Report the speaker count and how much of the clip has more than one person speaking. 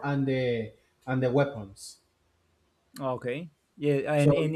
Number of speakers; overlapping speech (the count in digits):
2, about 3%